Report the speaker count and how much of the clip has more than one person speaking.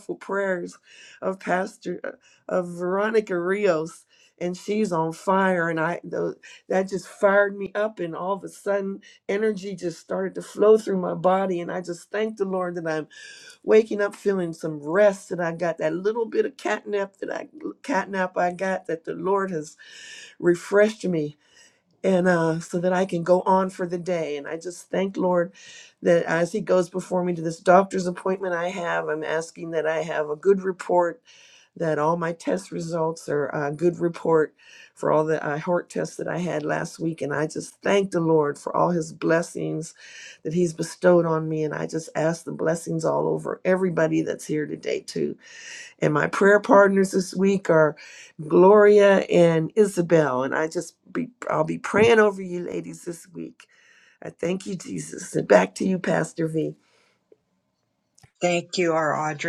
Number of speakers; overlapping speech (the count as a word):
two, no overlap